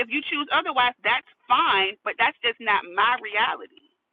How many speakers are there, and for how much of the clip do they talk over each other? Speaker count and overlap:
1, no overlap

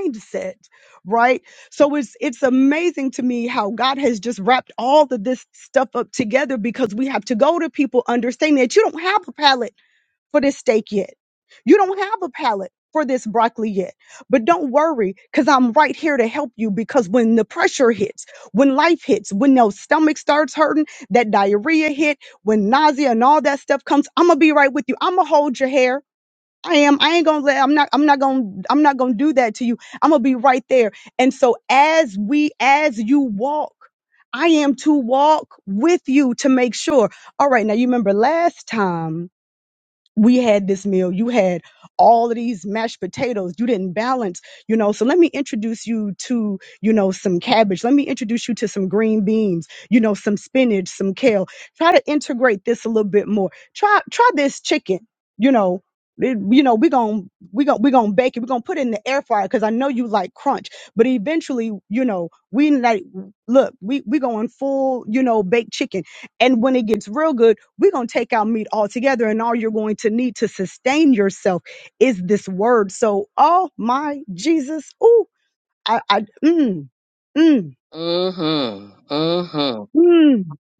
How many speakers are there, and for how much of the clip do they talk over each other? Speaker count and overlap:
2, no overlap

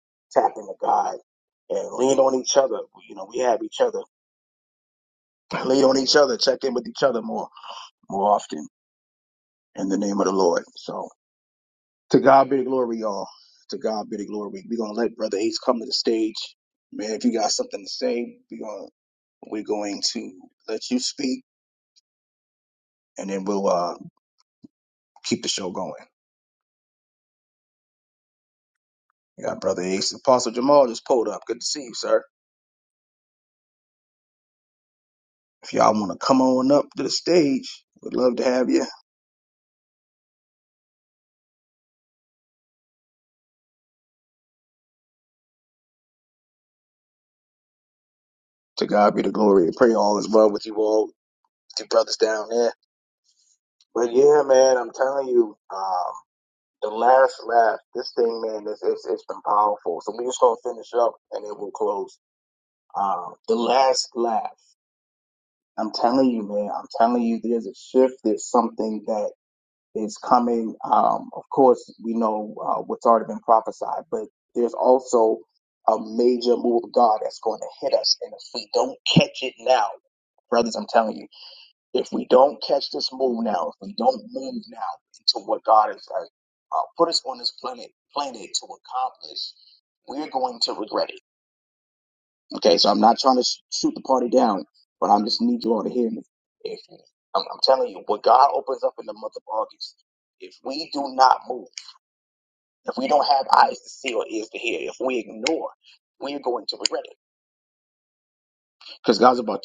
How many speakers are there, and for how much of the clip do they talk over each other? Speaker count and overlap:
1, no overlap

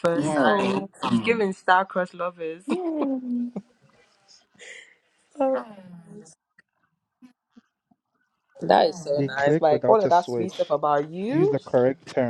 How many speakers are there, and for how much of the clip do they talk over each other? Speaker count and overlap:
3, about 21%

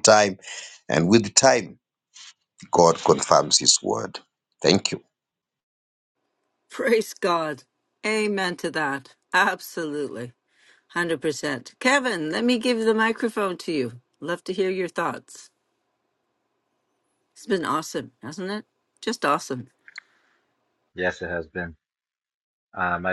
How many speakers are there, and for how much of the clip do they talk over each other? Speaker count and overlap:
3, no overlap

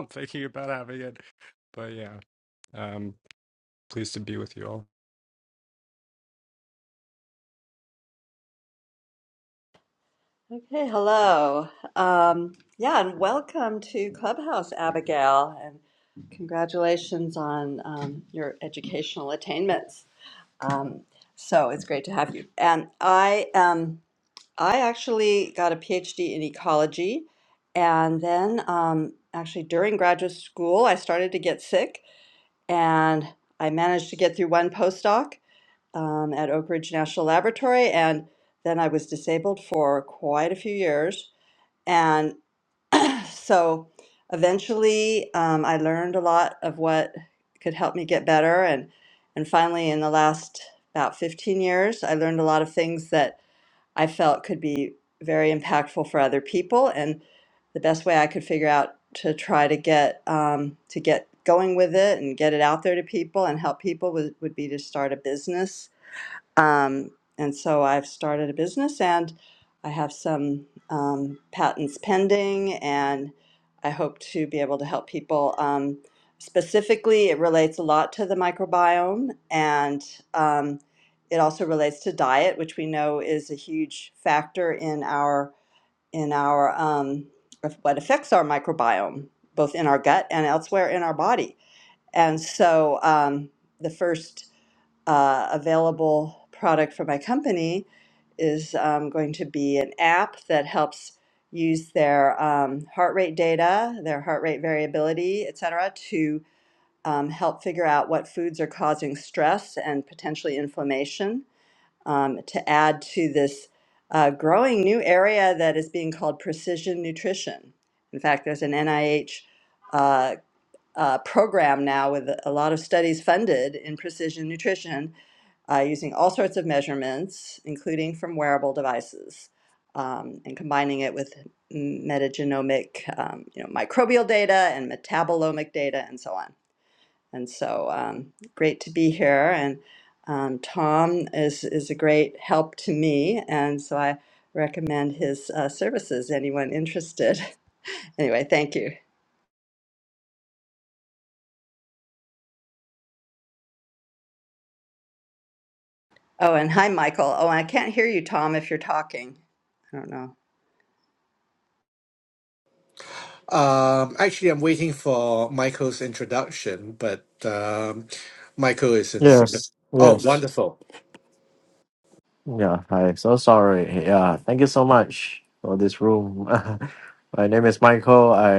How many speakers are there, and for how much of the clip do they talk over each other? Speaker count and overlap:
4, under 1%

